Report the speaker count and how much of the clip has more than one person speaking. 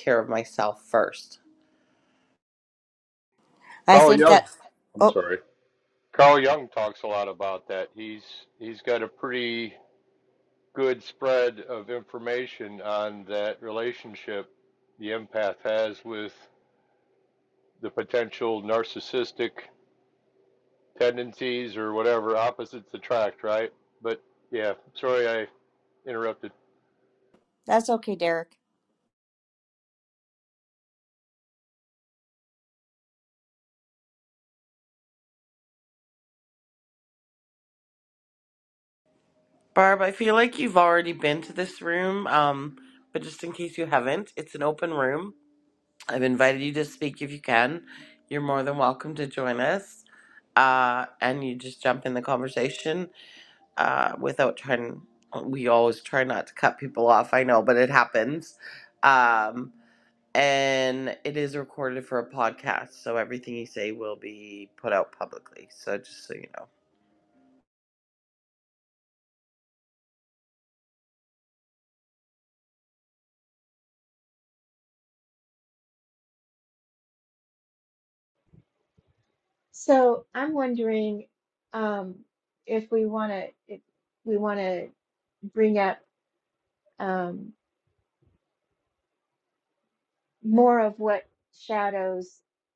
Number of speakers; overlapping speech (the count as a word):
four, about 1%